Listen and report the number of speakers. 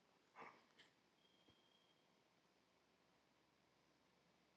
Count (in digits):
0